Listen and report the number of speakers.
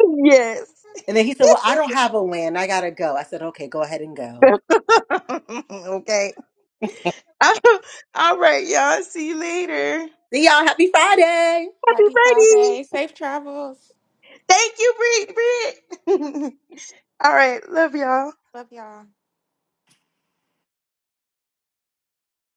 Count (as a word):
three